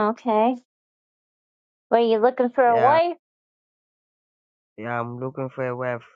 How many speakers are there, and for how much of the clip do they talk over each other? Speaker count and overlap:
two, about 6%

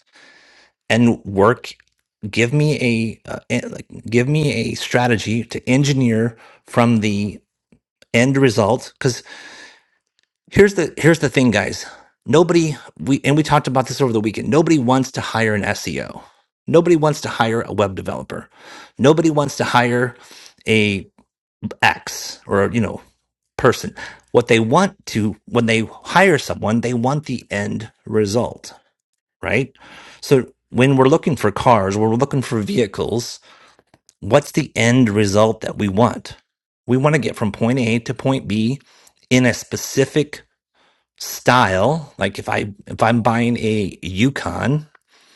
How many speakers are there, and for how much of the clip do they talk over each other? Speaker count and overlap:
one, no overlap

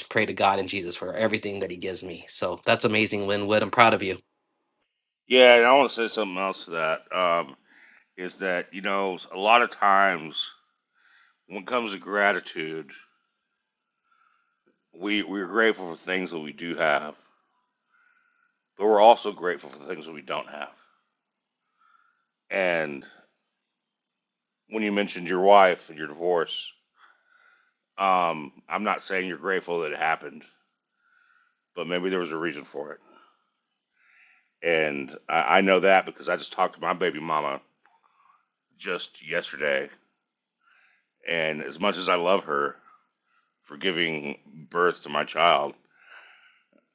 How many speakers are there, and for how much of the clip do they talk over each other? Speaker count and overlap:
two, no overlap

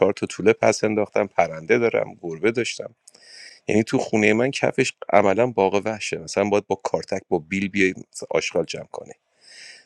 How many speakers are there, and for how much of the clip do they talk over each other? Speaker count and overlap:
one, no overlap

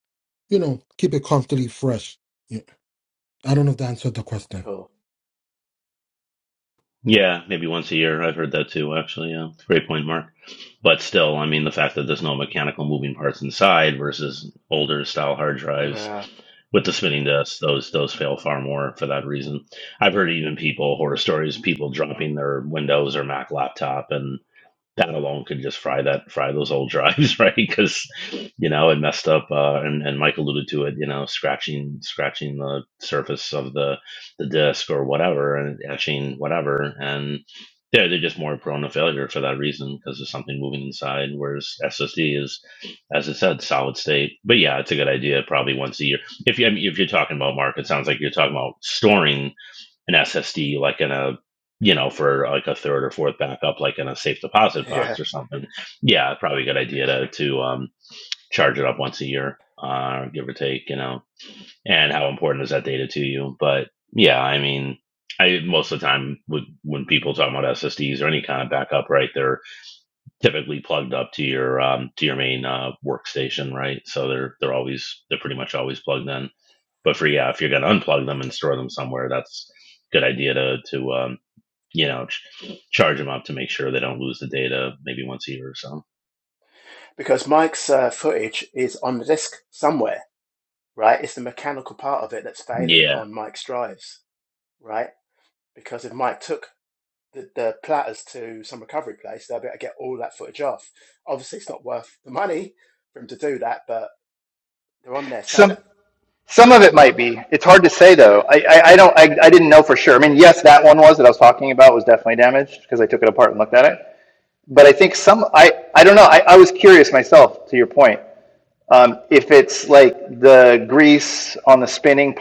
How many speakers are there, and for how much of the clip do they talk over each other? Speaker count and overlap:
four, about 1%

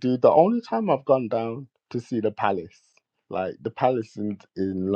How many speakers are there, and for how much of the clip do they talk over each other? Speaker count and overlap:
one, no overlap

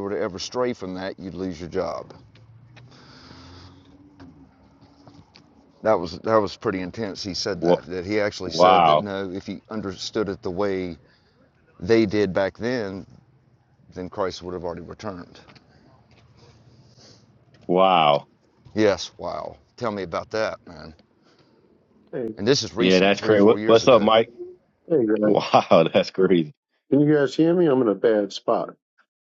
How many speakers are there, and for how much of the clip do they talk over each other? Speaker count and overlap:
three, about 7%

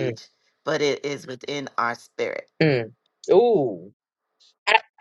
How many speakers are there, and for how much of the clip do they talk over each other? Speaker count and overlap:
two, about 3%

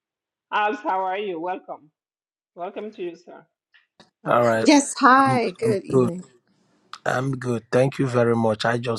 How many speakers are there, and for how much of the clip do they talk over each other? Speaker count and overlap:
three, about 11%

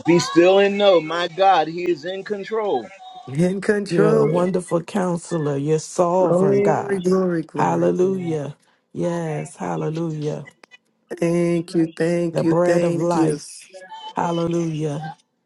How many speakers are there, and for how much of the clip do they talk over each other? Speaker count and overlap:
four, about 49%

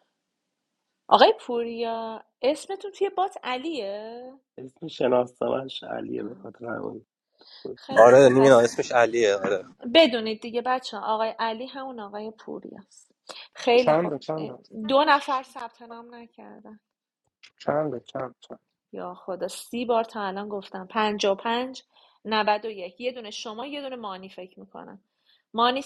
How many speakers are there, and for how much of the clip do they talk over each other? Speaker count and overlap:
four, about 4%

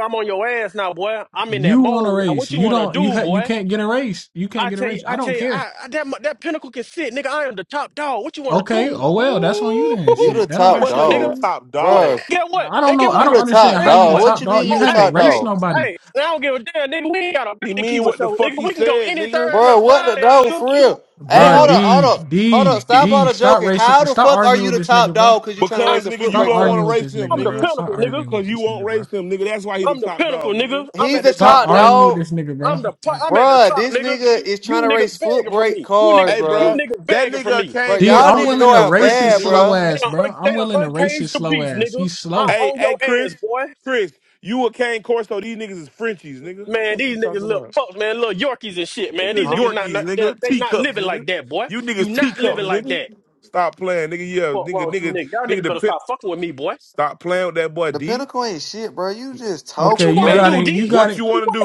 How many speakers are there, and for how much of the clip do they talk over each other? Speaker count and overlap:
four, about 63%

